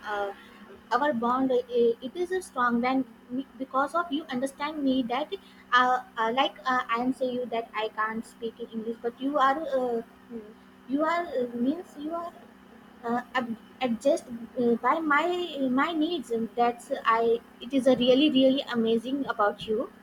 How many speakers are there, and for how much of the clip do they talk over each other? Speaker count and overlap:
one, no overlap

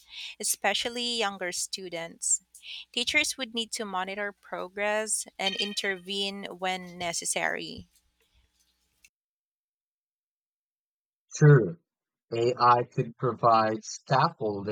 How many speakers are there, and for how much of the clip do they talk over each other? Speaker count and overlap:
two, no overlap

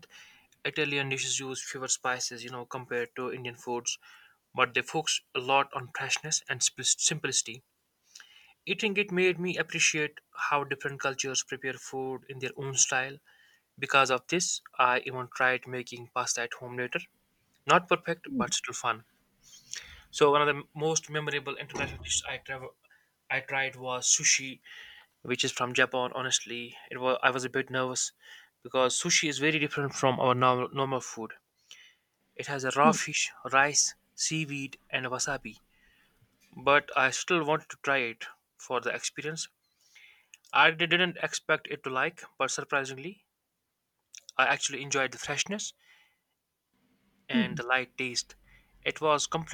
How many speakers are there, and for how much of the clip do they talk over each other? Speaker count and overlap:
one, no overlap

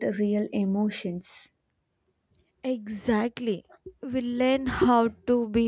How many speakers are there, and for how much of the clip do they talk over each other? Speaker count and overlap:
two, no overlap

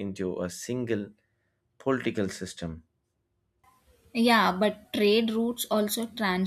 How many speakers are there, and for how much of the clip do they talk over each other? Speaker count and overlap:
two, no overlap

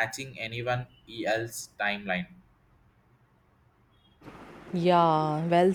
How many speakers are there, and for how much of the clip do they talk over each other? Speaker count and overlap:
two, no overlap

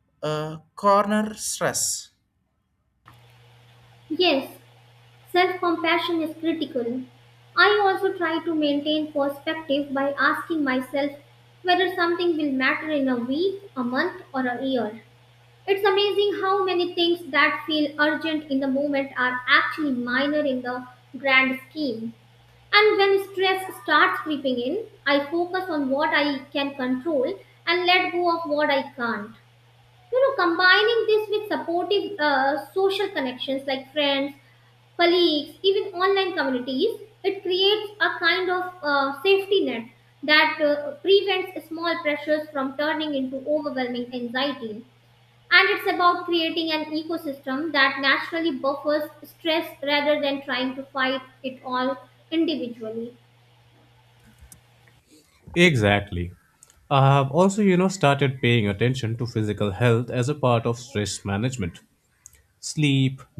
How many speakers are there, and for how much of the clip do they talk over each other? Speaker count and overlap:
three, no overlap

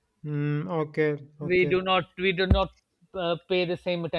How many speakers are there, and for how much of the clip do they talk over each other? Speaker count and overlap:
two, about 8%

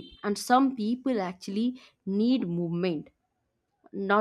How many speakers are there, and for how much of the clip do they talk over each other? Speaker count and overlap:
one, no overlap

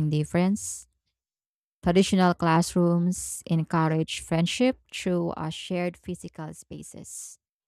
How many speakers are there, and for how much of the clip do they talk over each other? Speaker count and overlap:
one, no overlap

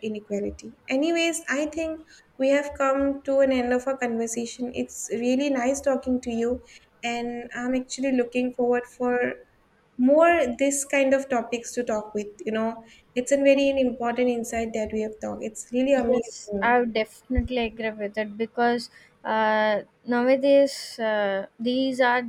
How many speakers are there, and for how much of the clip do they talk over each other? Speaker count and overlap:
two, about 1%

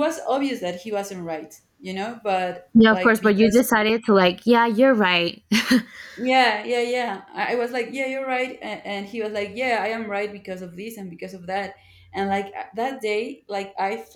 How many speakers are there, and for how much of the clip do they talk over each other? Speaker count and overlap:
two, about 6%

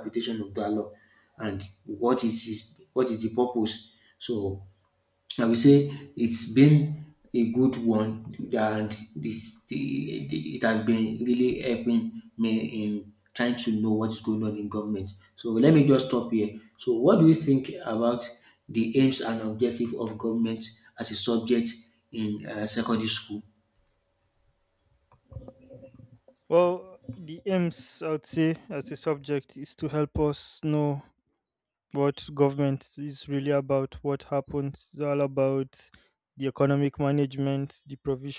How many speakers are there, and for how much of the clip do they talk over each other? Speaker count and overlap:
two, no overlap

